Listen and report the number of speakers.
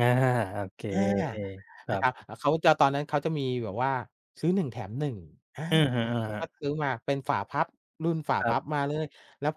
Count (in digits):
2